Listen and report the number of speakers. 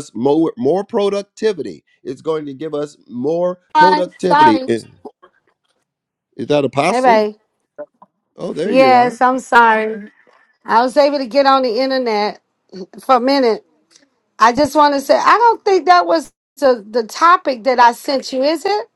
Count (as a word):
two